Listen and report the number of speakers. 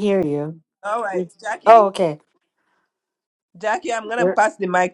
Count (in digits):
2